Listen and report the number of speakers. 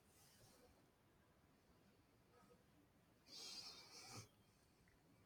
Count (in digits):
0